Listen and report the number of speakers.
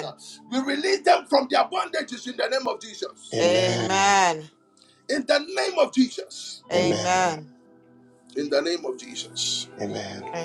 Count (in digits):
3